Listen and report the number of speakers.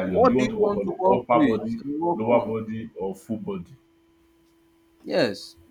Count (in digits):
2